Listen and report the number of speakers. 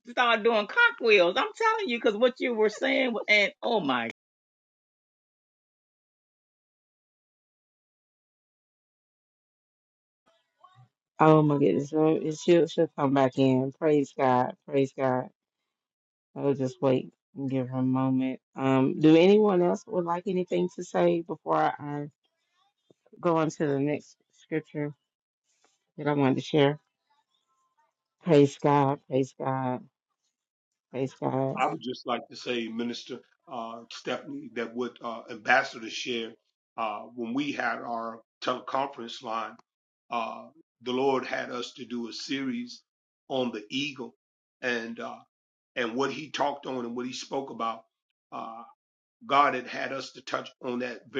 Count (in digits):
3